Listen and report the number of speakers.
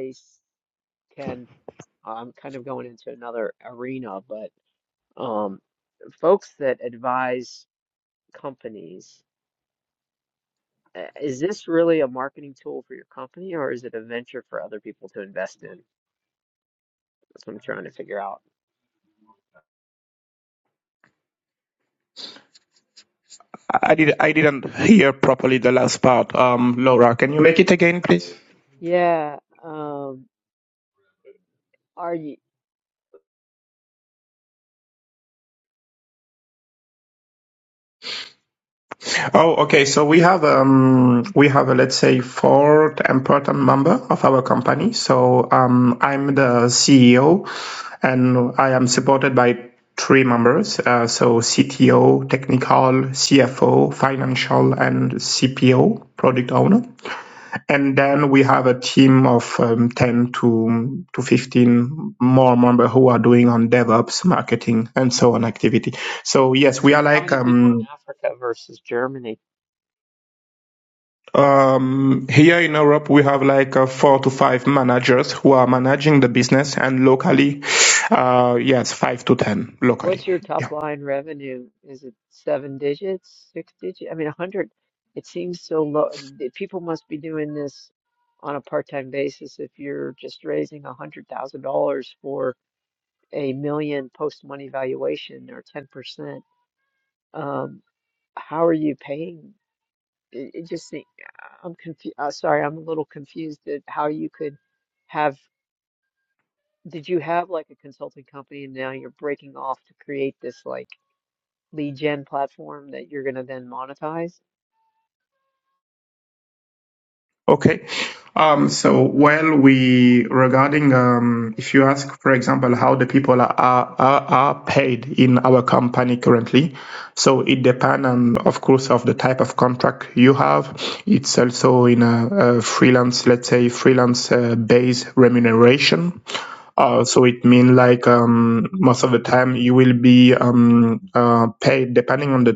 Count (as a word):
two